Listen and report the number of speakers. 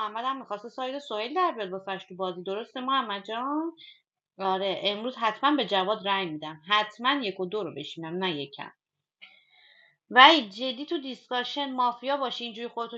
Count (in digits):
1